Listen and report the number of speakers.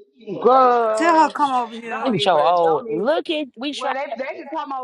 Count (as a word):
three